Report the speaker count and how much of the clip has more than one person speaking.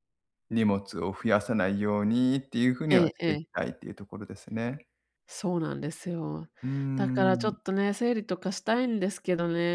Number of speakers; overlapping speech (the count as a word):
two, about 11%